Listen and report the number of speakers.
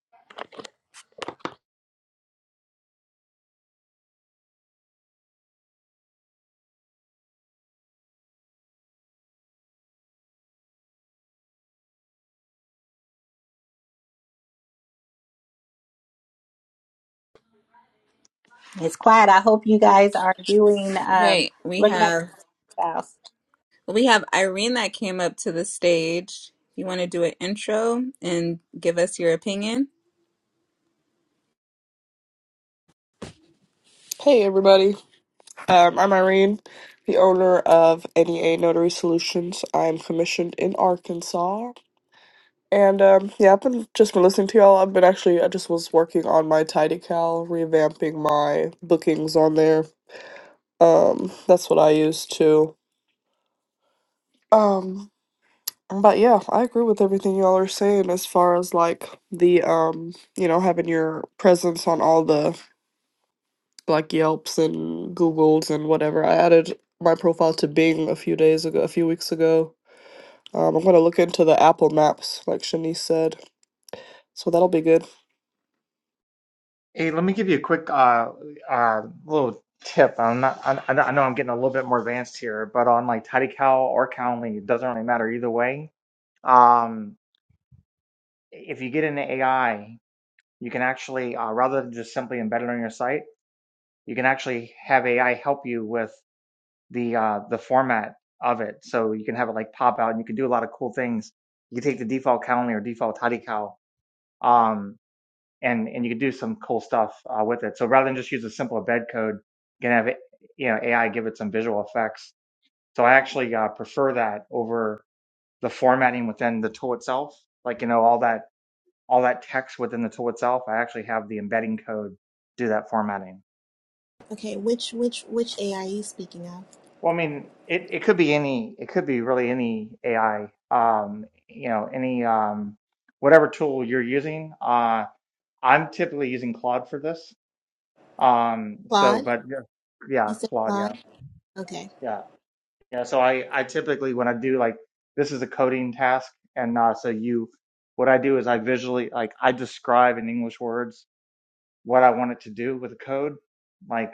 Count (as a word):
five